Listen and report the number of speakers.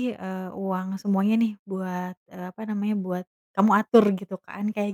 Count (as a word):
one